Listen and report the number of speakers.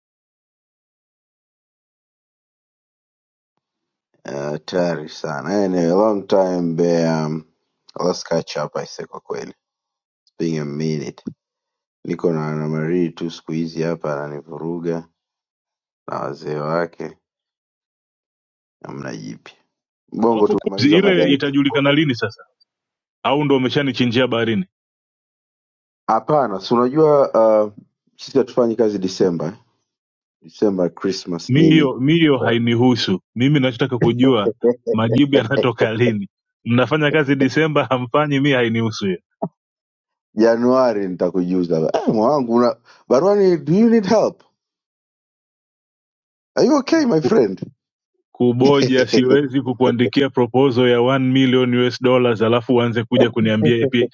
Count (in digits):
2